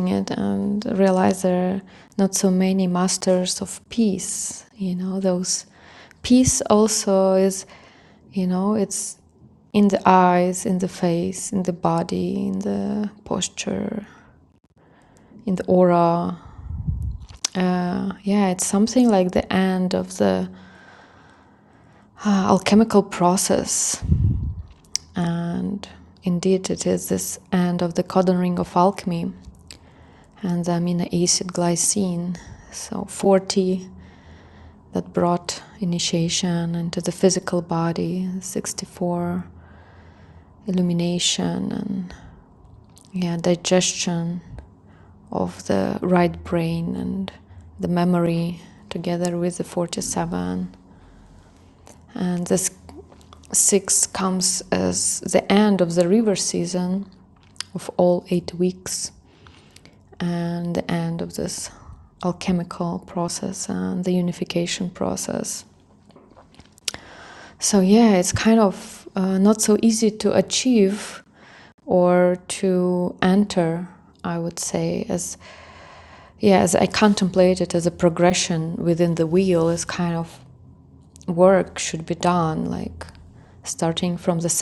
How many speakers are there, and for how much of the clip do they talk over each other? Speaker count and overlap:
1, no overlap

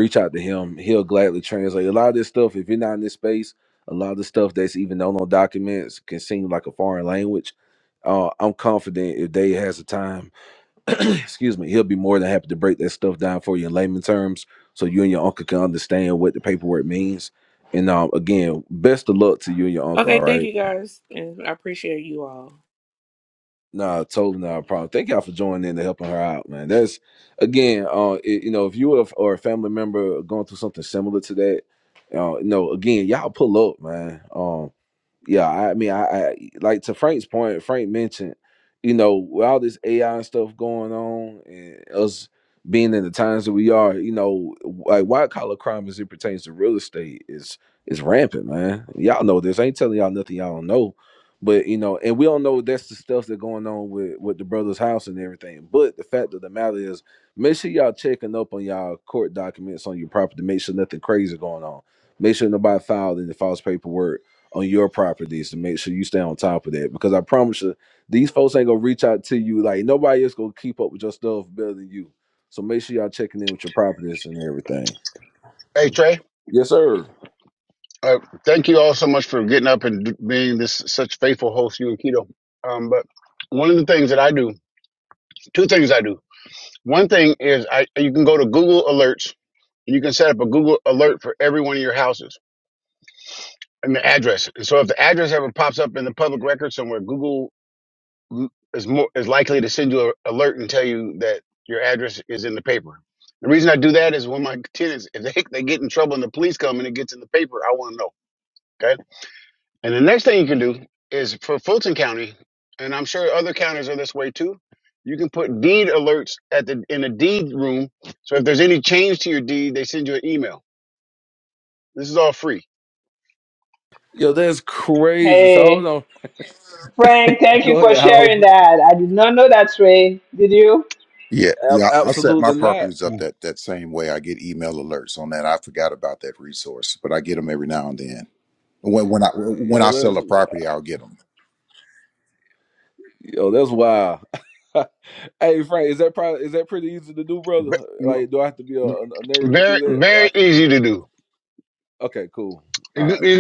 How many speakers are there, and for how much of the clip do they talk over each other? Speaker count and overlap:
5, about 4%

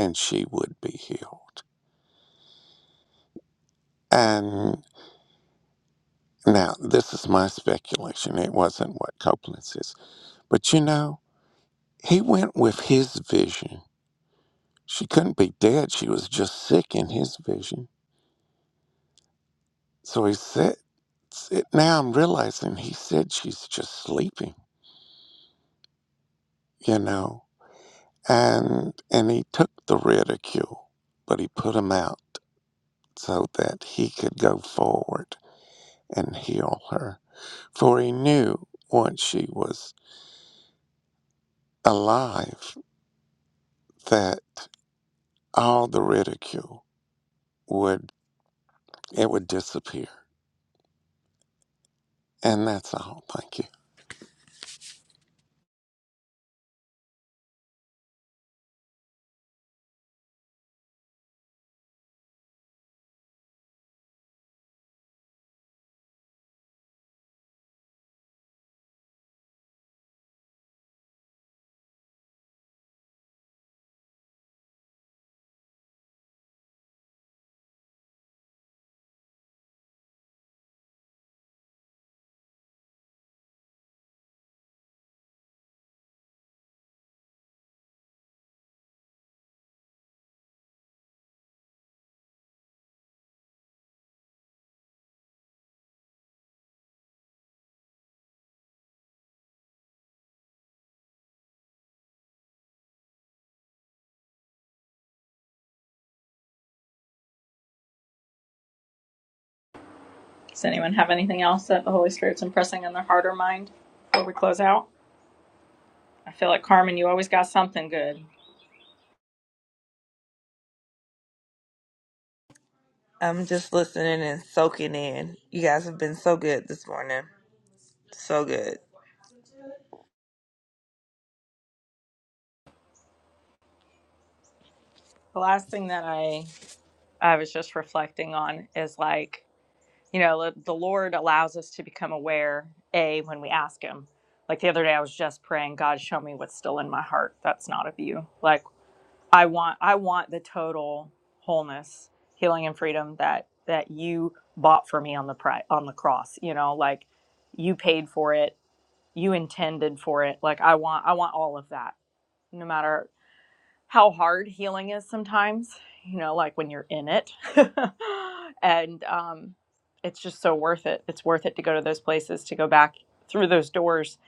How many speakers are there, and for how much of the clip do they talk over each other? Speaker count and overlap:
3, no overlap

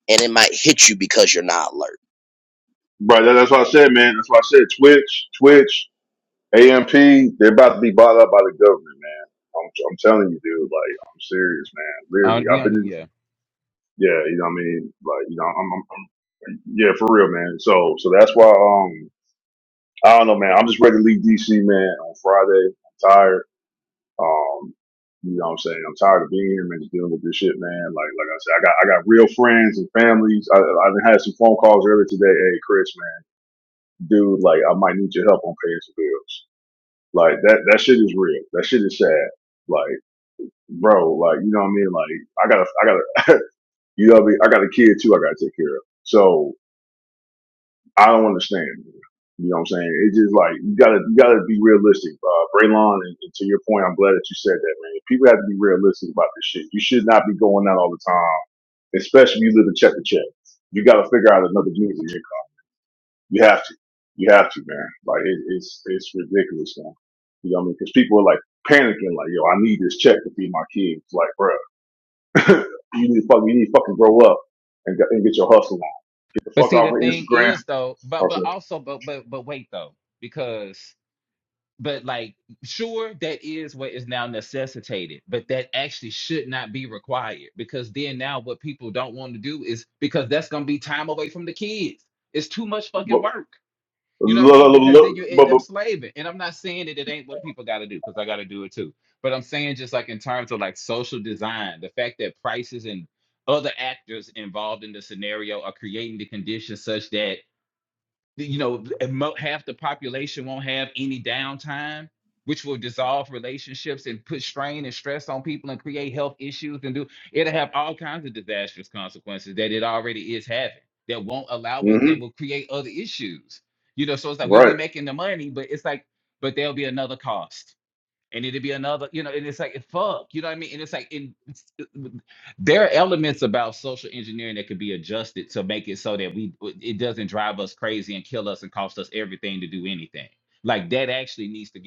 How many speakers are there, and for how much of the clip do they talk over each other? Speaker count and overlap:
3, about 3%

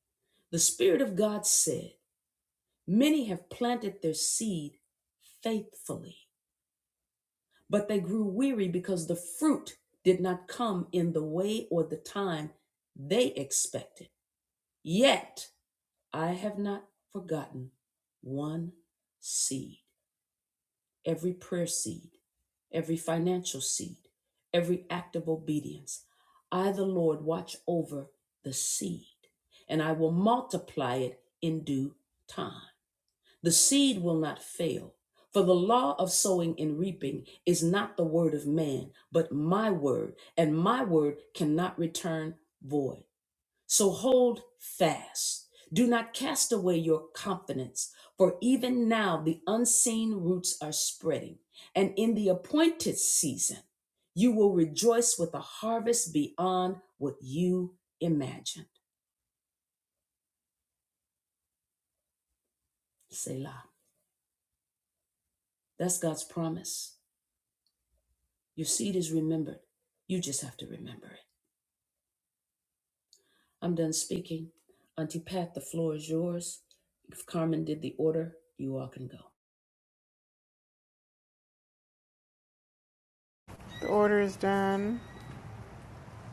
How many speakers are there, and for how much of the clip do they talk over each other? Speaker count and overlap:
2, no overlap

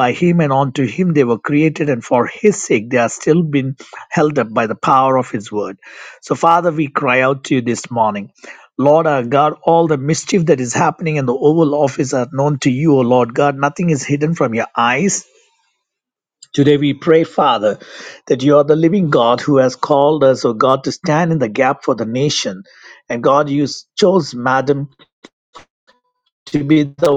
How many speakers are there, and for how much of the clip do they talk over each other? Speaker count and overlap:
1, no overlap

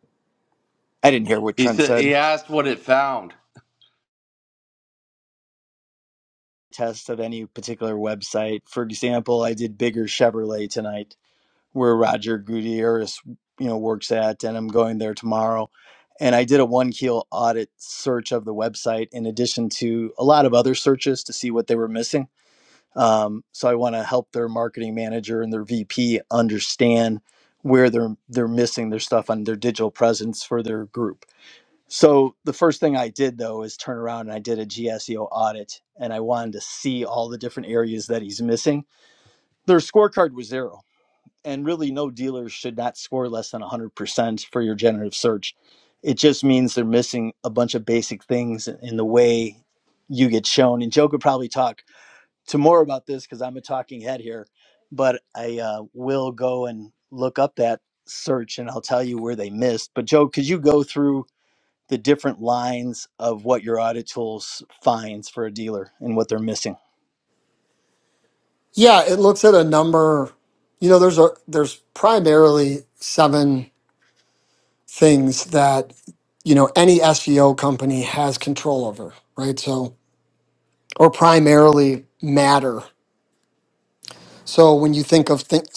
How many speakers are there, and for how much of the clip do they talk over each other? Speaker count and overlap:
3, about 1%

